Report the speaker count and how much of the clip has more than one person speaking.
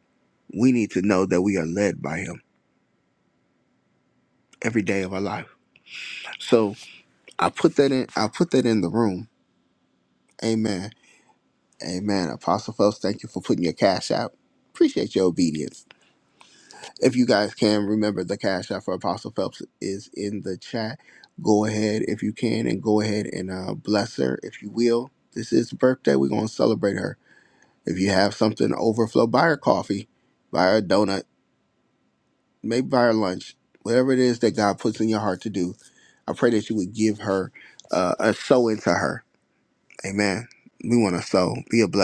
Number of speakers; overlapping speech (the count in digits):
1, no overlap